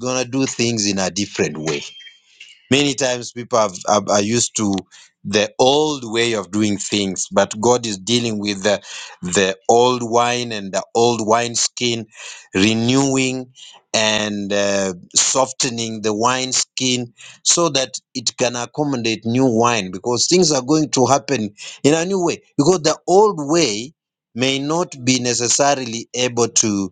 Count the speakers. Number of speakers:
1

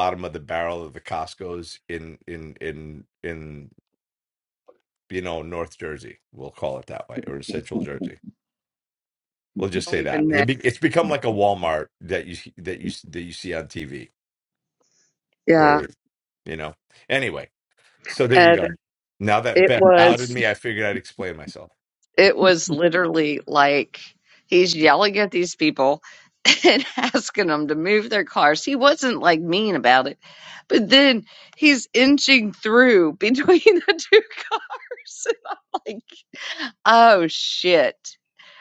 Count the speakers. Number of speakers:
2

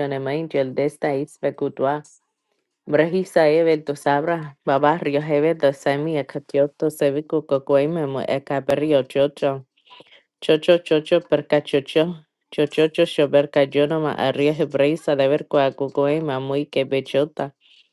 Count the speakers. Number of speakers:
1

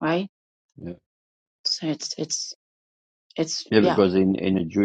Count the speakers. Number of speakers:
2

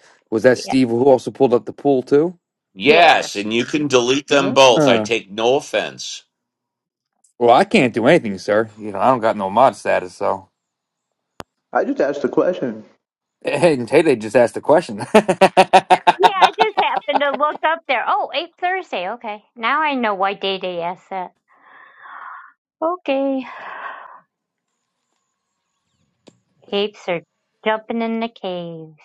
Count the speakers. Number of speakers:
4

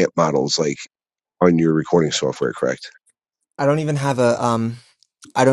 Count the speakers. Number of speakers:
2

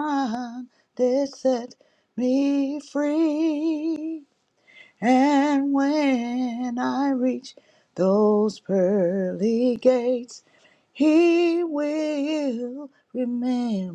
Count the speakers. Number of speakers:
1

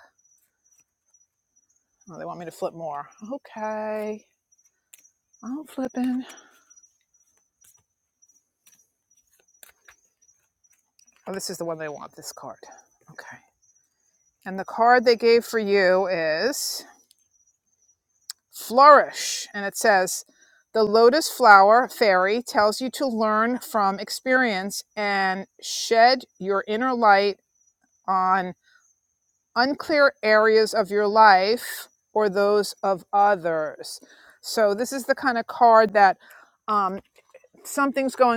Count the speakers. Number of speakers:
1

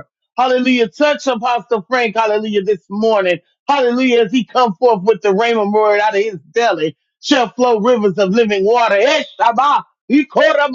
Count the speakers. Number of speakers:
1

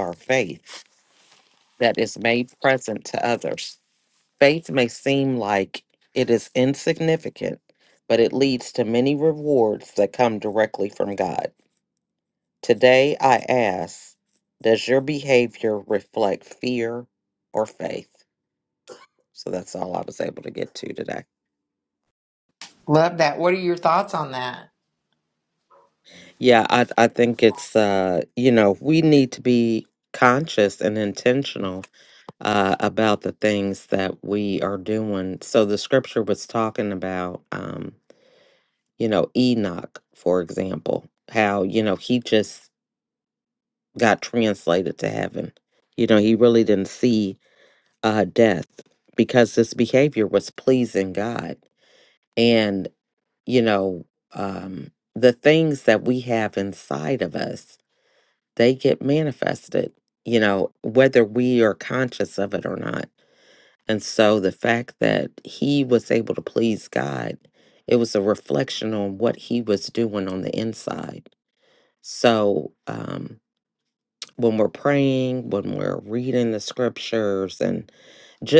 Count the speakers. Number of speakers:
2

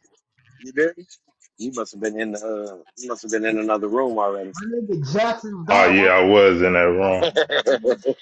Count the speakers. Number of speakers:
3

